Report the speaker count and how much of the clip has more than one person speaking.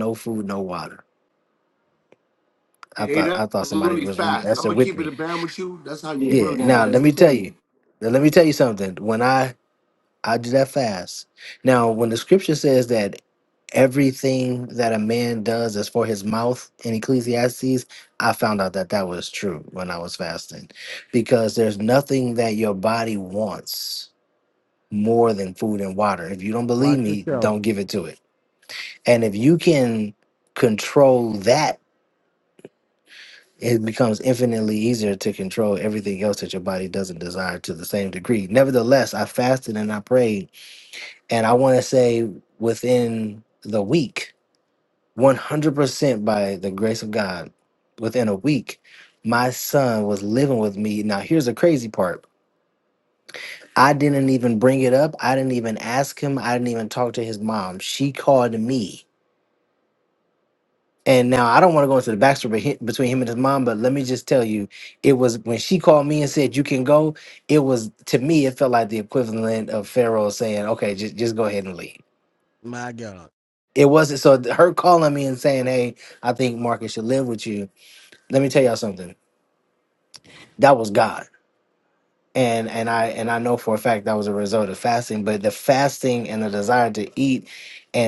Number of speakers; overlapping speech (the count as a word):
three, about 4%